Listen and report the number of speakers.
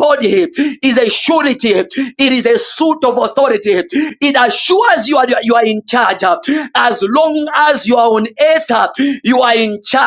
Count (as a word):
one